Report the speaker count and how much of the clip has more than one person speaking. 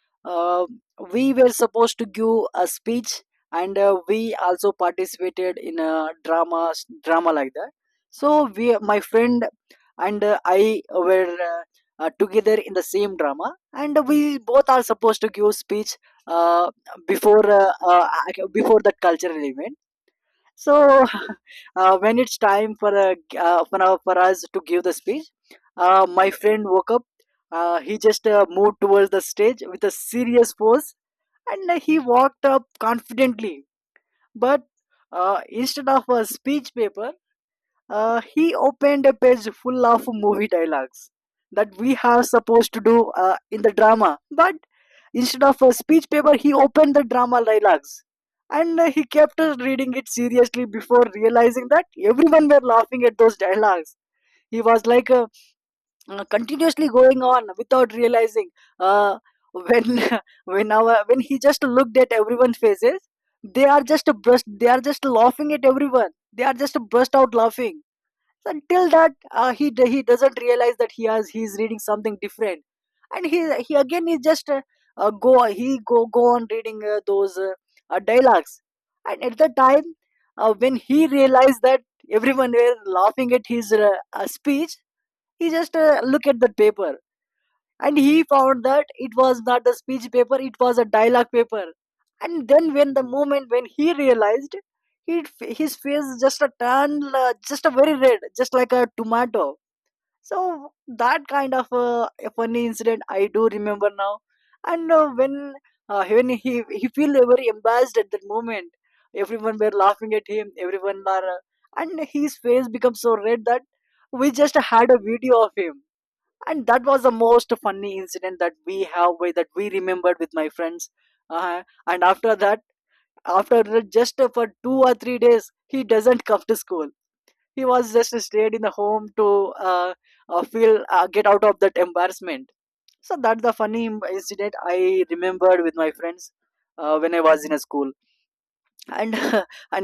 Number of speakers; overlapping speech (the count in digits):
1, no overlap